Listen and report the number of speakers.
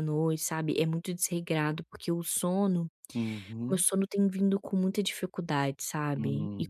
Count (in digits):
2